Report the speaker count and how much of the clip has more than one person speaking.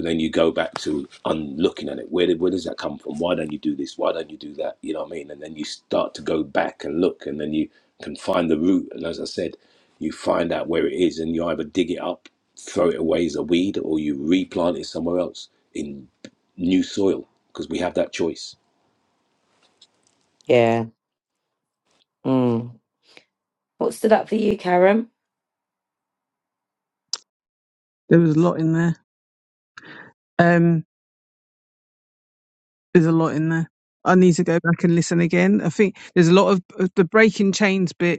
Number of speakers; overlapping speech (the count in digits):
3, no overlap